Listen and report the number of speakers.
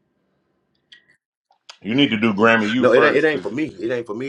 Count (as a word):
two